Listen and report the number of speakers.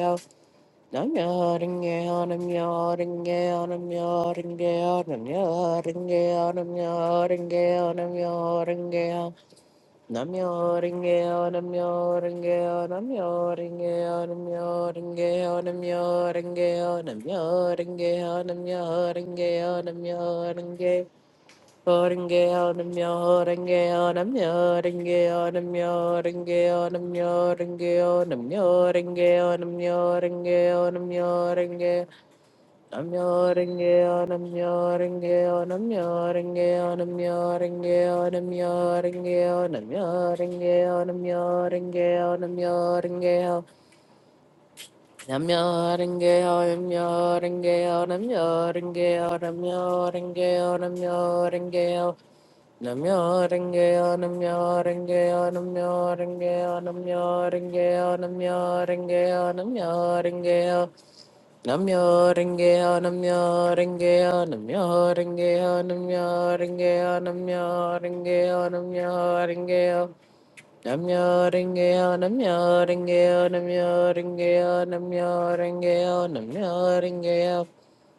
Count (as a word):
one